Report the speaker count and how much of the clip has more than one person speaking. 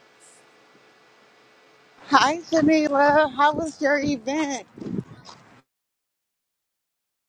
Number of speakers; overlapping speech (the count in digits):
1, no overlap